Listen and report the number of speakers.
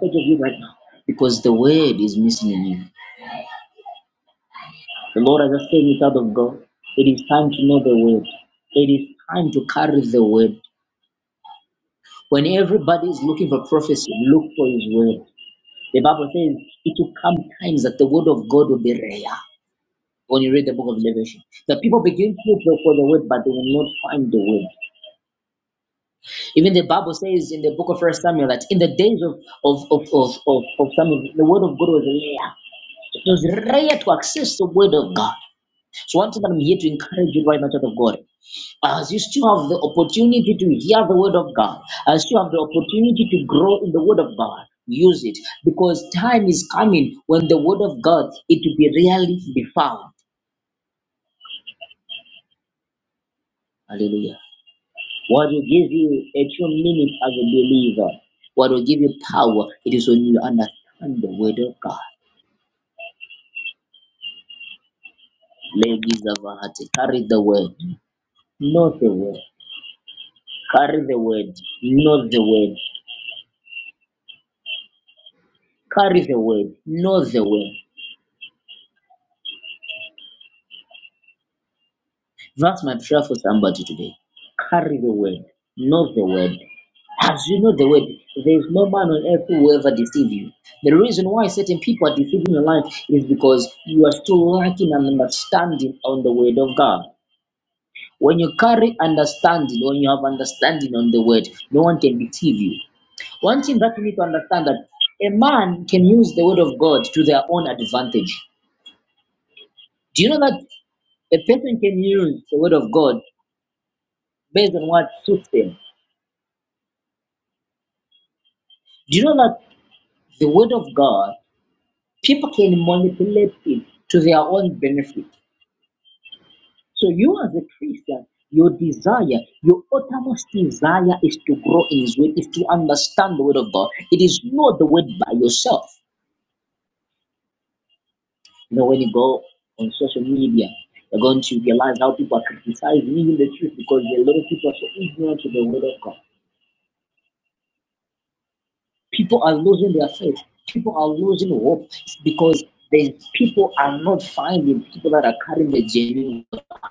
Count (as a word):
one